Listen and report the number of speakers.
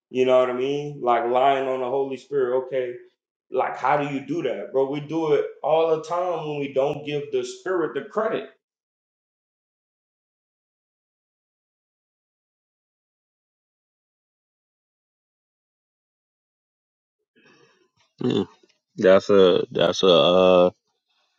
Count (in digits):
2